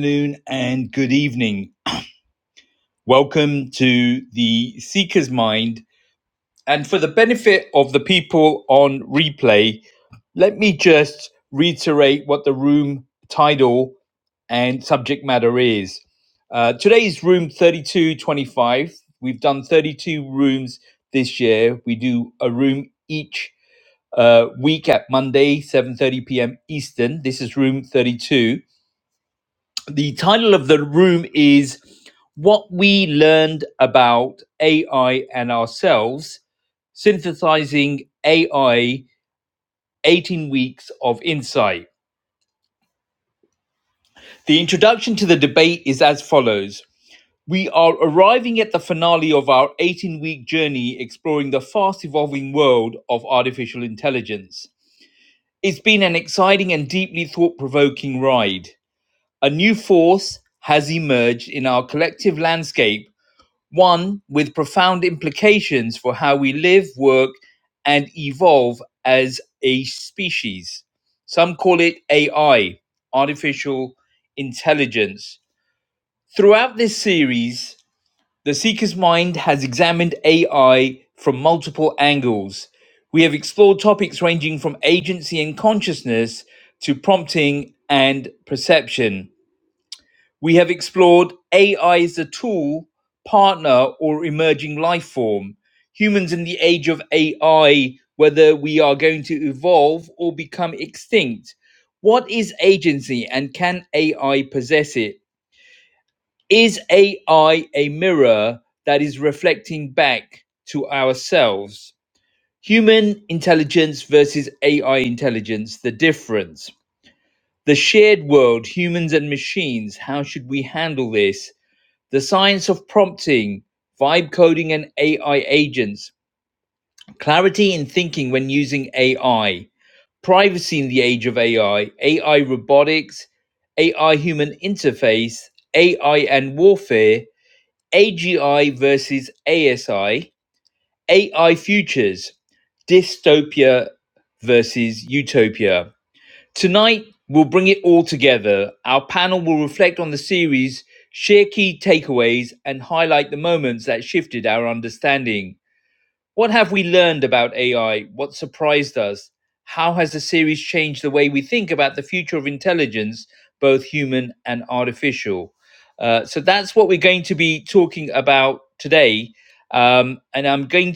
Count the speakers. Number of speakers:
1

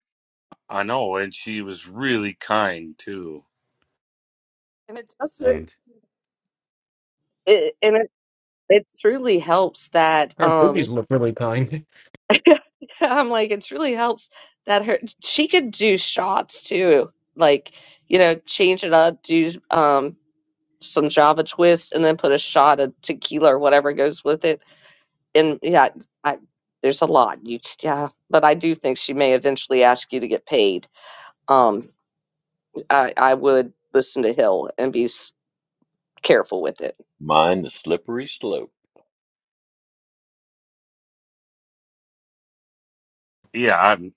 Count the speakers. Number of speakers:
4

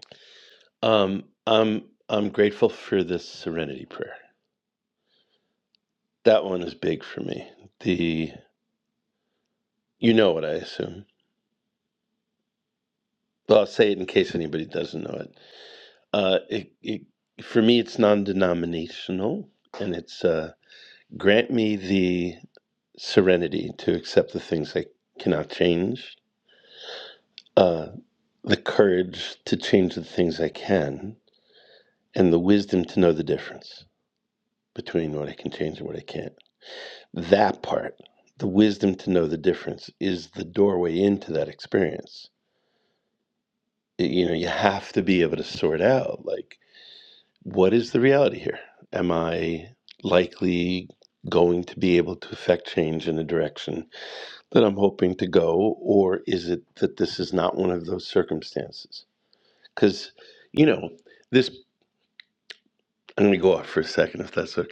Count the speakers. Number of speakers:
1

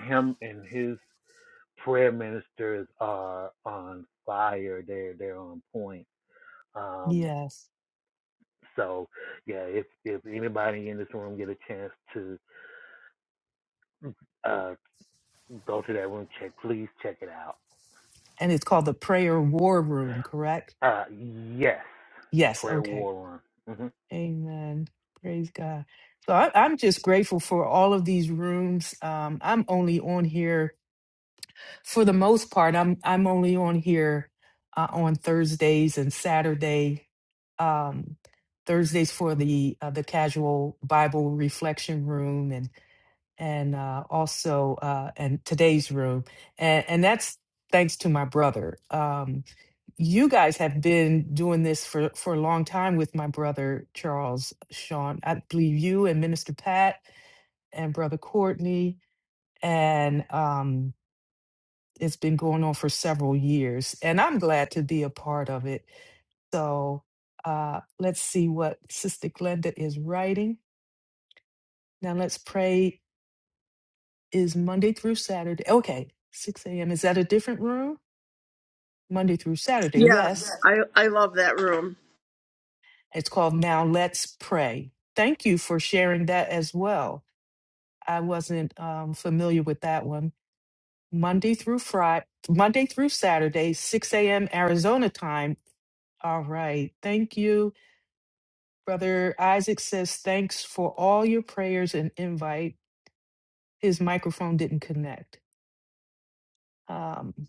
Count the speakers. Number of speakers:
3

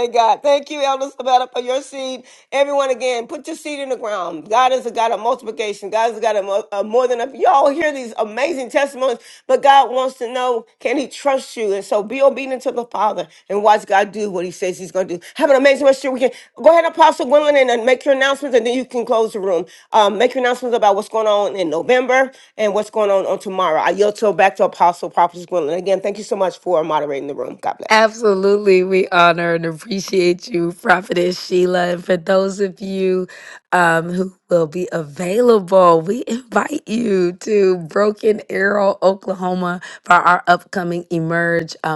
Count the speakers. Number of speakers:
2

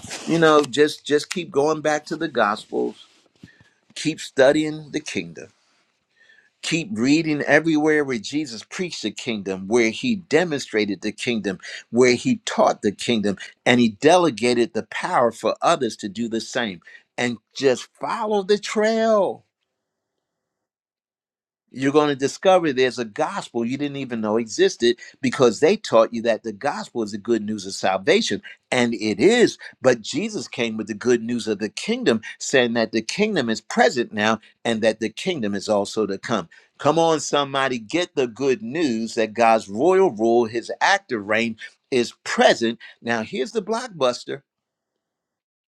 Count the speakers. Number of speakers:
1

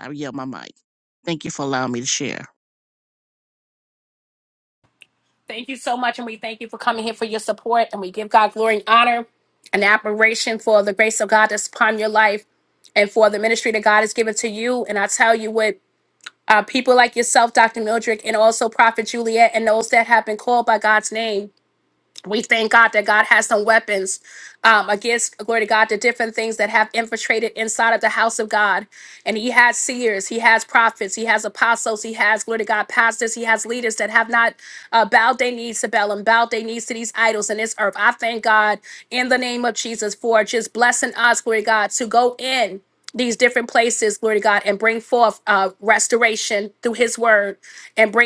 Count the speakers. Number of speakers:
2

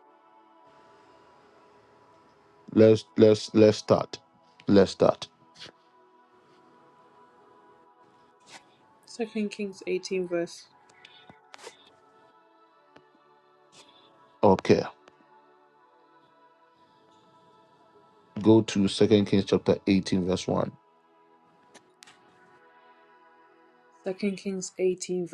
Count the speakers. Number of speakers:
2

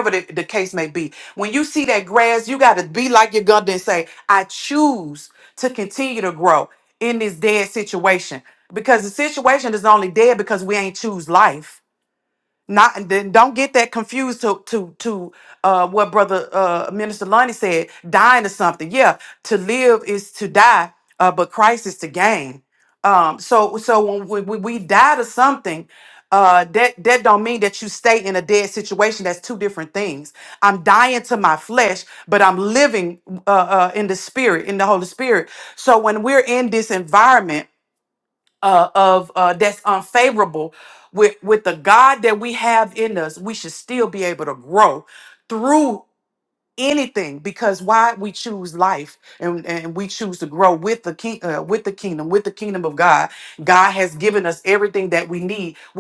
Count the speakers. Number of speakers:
1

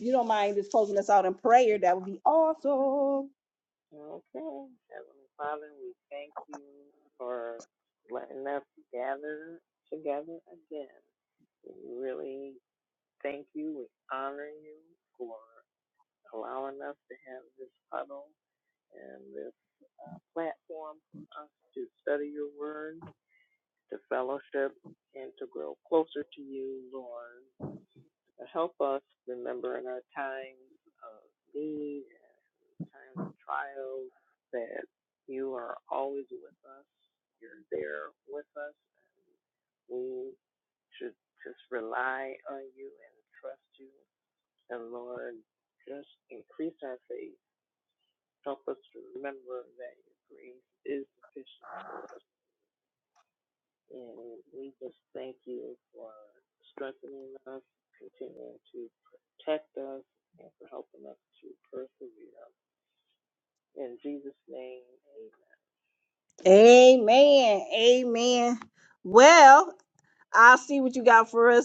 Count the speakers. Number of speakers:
2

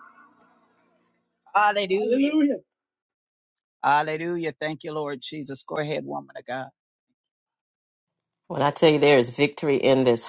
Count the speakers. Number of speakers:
2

